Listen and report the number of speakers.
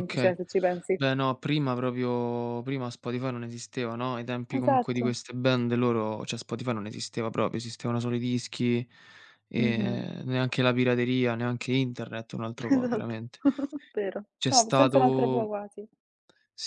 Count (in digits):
2